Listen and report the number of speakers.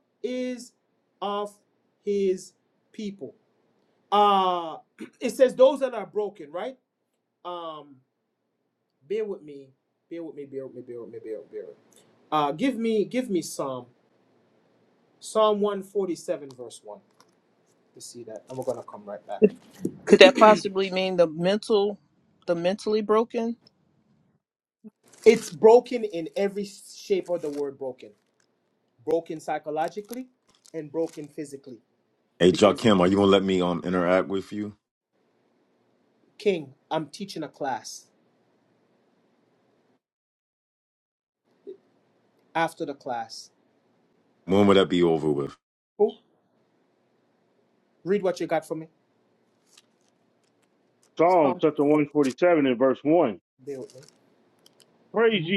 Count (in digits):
4